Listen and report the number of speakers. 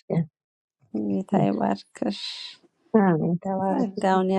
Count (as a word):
two